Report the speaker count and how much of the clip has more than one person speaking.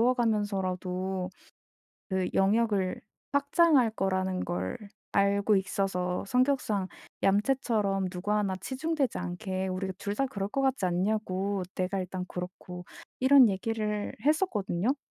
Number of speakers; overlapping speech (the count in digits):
1, no overlap